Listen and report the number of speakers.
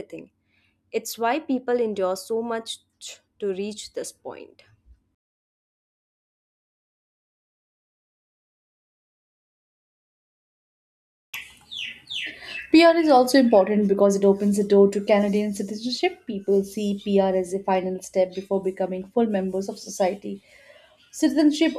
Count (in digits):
2